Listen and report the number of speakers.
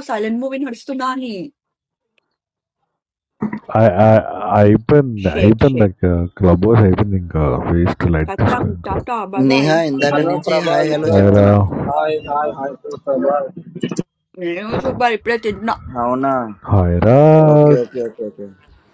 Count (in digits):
4